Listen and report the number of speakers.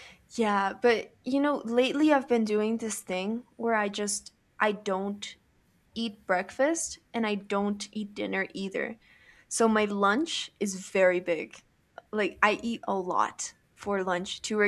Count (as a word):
one